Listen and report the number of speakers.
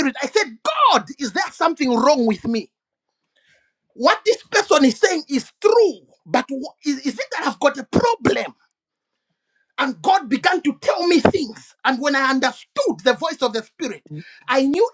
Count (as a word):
one